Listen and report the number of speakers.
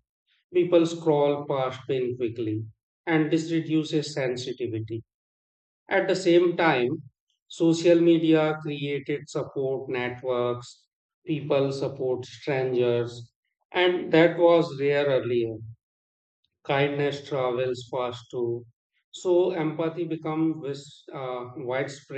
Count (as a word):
one